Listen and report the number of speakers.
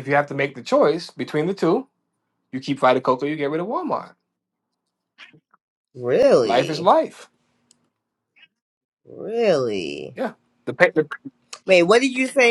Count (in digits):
2